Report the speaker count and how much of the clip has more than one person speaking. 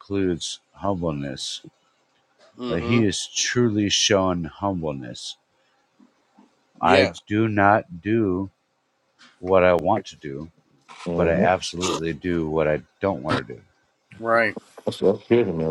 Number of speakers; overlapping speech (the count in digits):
3, about 7%